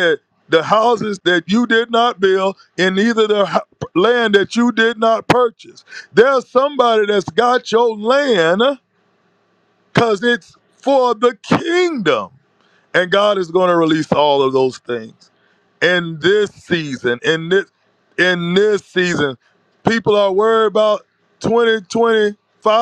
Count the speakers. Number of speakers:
one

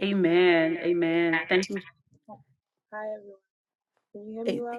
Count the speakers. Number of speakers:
two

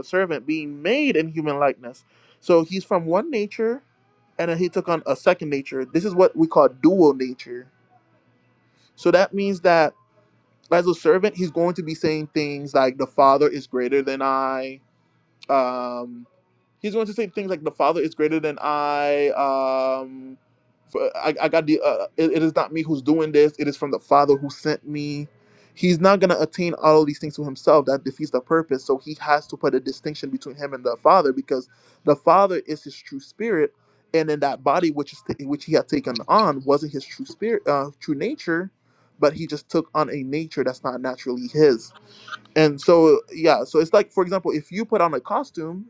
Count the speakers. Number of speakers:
one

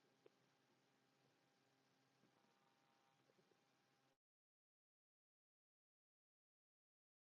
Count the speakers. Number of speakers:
zero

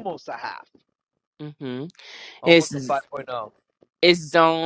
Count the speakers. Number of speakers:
two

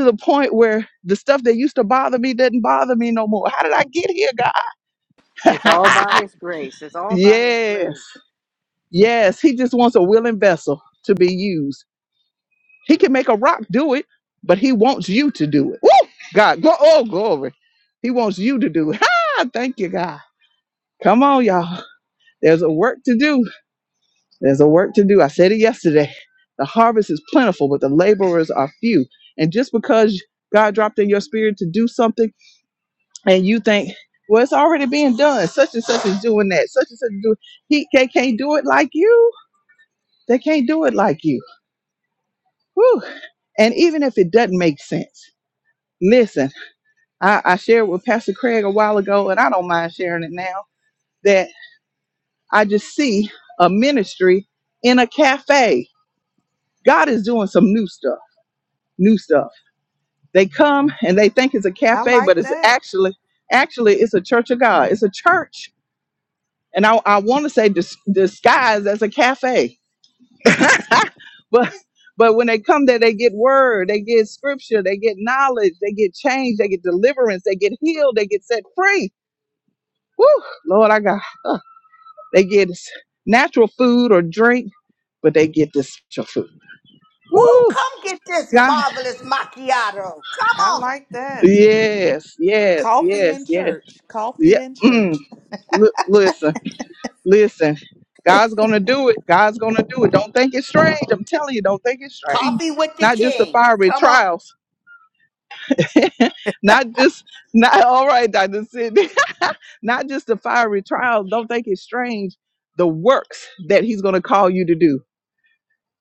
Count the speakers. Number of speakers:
four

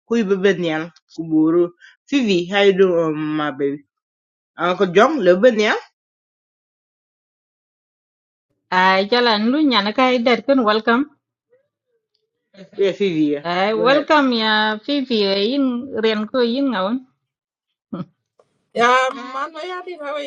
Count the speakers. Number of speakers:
three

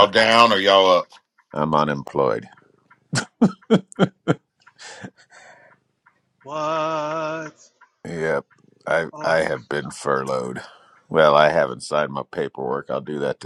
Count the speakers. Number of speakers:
three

